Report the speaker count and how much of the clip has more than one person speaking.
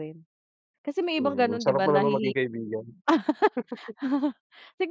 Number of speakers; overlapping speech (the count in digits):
2, about 24%